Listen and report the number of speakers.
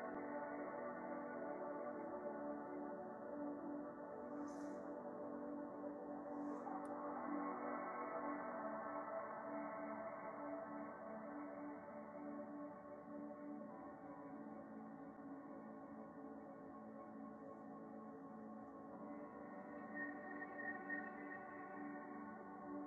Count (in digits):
0